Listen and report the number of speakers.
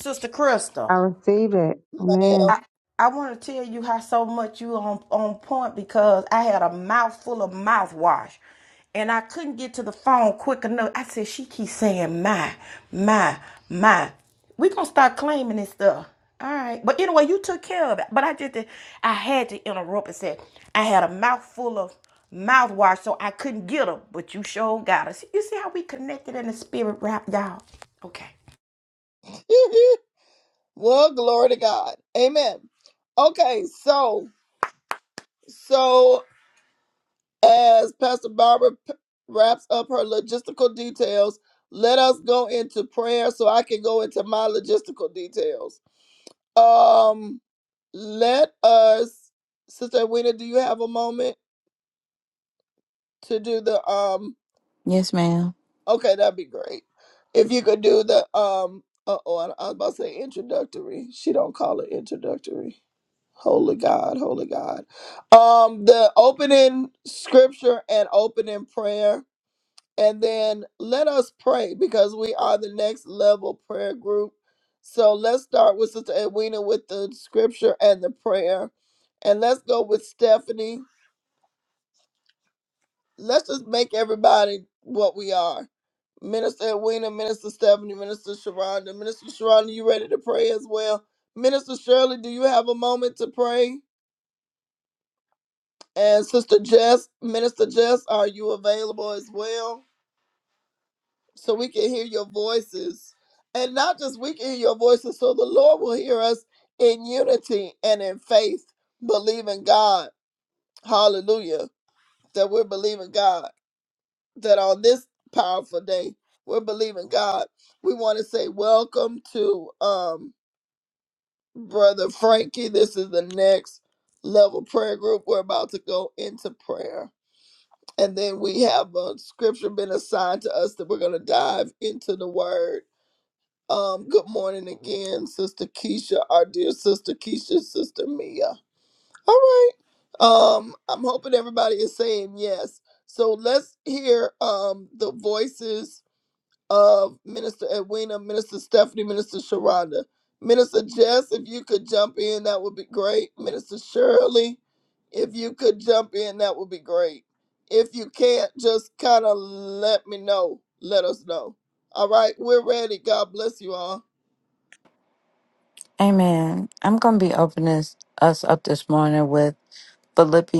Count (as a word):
four